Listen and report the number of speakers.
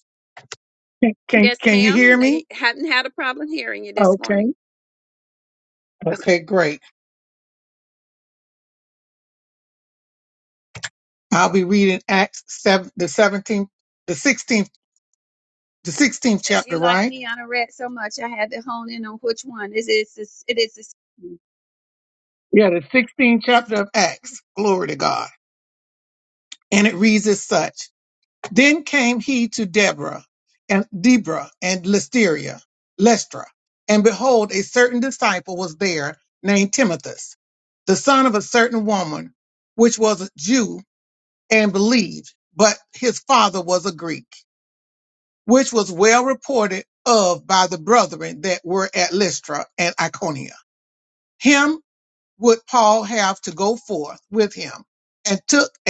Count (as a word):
two